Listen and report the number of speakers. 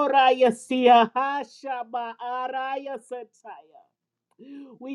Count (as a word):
one